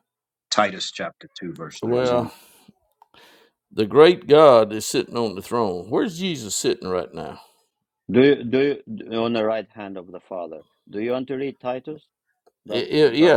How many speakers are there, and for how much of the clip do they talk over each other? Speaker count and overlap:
3, about 9%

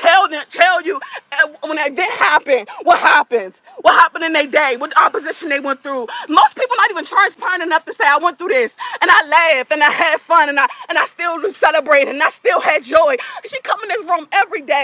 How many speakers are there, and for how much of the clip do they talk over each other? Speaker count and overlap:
1, no overlap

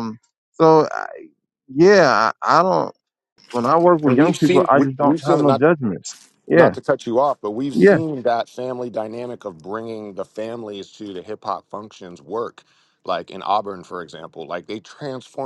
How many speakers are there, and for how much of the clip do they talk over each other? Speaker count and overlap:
2, about 13%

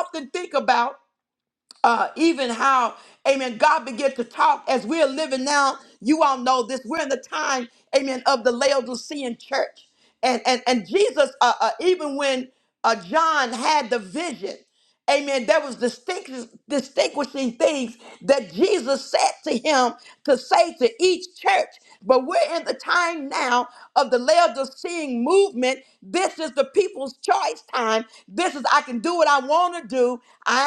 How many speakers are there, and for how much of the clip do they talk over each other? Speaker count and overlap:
1, no overlap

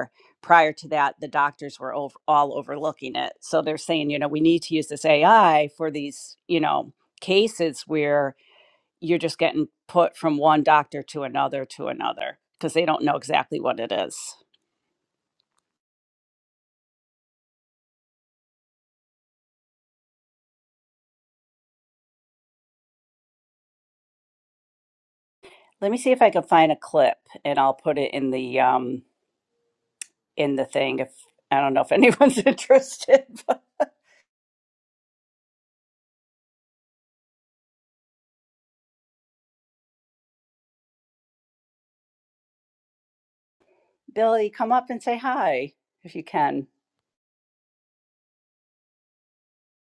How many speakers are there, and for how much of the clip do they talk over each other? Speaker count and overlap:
1, no overlap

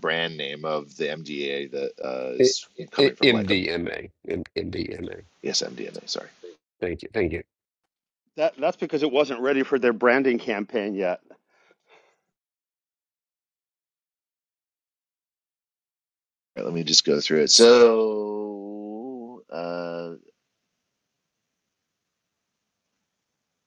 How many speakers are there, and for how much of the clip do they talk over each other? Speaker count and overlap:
3, about 5%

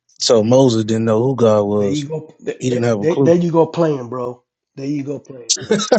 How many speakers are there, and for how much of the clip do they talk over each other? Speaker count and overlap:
2, about 8%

